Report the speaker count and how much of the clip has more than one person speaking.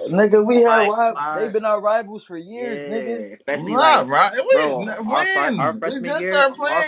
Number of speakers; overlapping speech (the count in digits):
3, about 61%